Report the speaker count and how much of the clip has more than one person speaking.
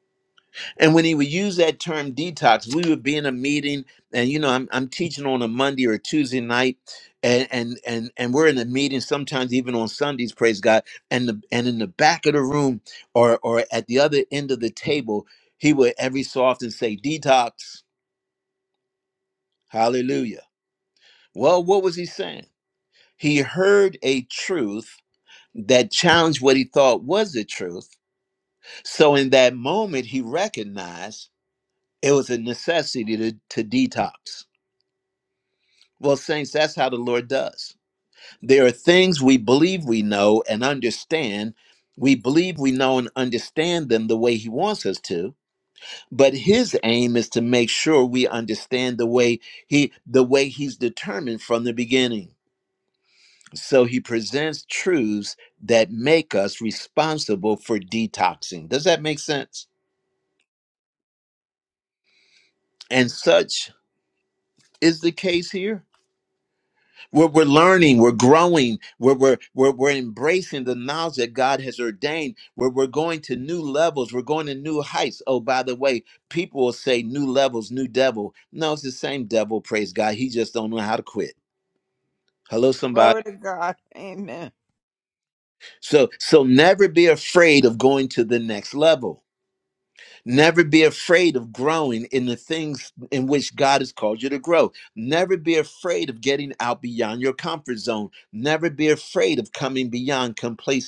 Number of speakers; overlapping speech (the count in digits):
2, under 1%